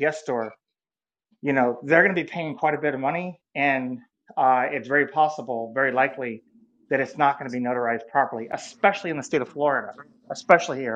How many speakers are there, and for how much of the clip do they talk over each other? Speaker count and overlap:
one, no overlap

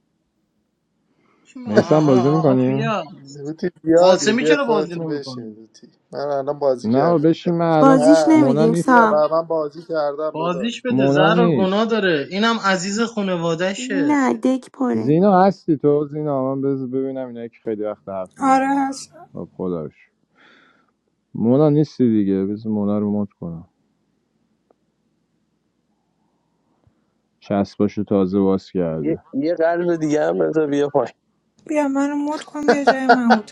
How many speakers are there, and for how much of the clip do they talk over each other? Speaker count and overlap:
six, about 18%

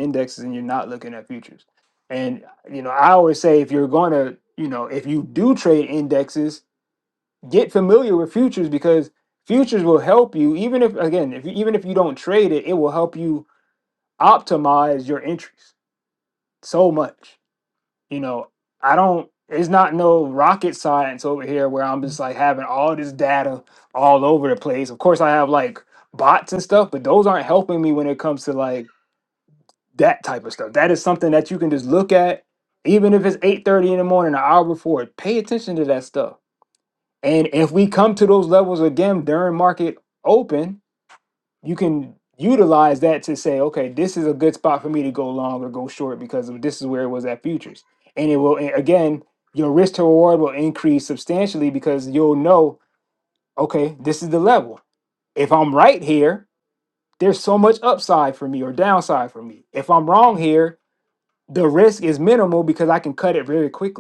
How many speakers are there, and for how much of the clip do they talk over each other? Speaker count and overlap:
one, no overlap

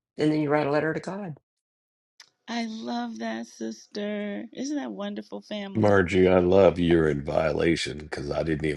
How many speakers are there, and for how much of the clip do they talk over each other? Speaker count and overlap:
three, about 2%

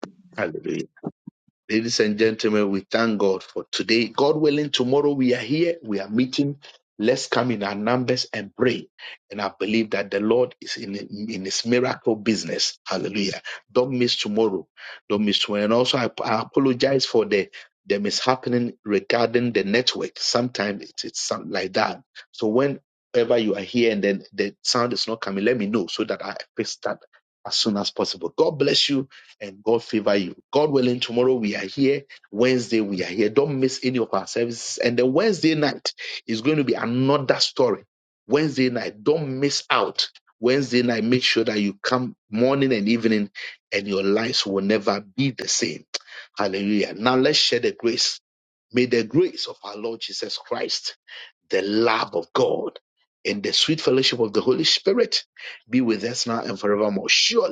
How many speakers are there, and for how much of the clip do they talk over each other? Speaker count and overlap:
one, no overlap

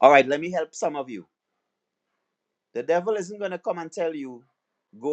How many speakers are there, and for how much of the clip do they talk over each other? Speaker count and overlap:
one, no overlap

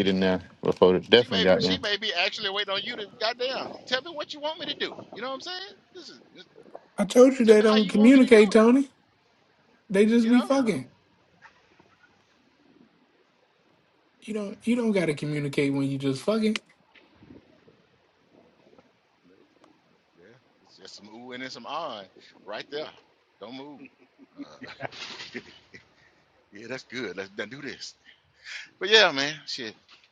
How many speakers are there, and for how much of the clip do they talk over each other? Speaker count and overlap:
three, about 7%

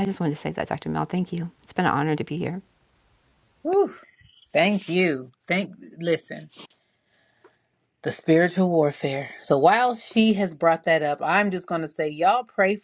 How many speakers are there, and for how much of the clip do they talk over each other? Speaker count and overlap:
two, no overlap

